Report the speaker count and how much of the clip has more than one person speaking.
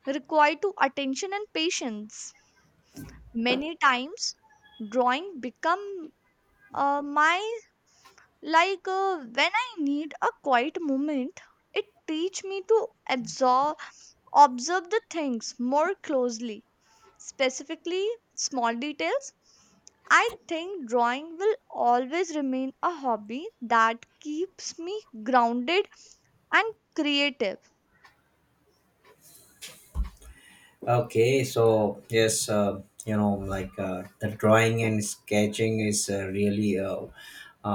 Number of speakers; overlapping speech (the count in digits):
2, no overlap